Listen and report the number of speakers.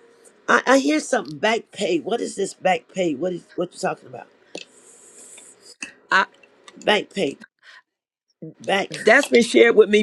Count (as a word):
two